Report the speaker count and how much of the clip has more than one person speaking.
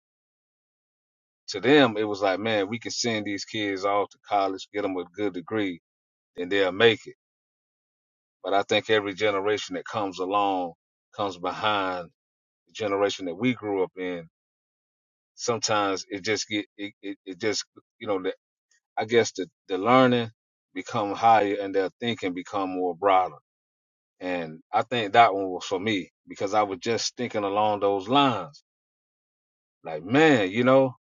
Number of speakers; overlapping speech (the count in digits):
1, no overlap